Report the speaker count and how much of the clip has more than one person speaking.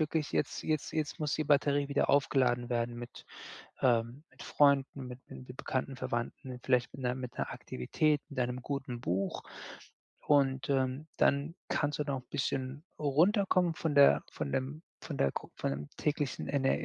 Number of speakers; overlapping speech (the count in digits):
1, no overlap